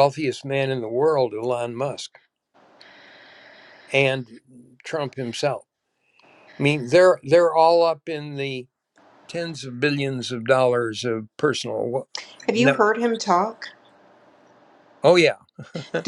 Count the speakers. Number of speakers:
two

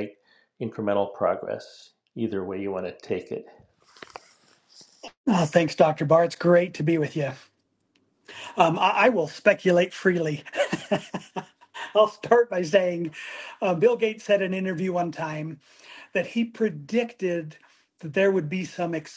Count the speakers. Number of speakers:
two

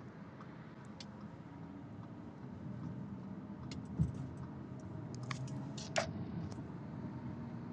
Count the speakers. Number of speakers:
zero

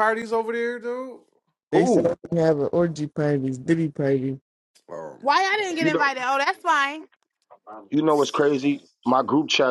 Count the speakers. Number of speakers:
four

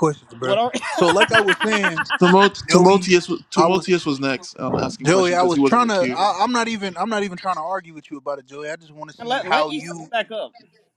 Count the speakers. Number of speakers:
three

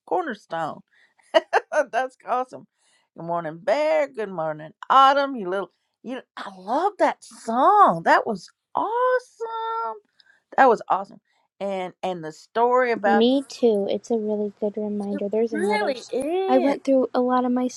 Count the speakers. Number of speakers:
two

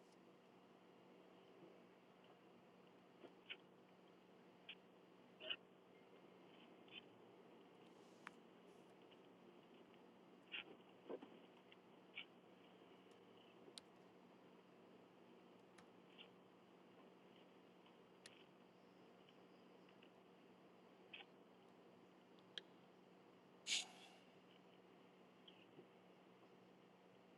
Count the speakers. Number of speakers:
zero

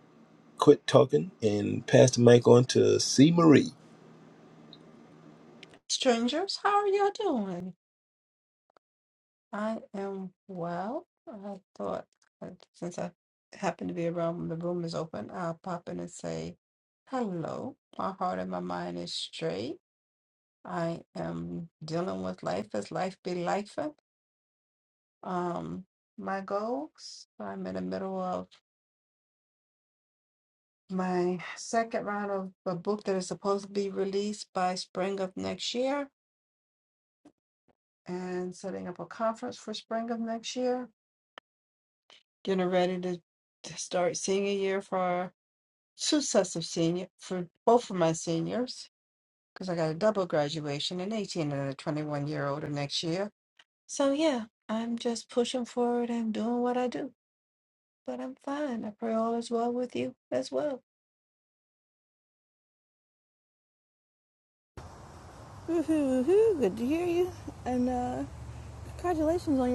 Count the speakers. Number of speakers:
three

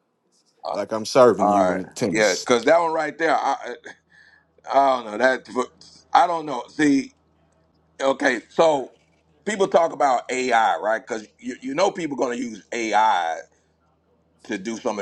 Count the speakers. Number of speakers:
two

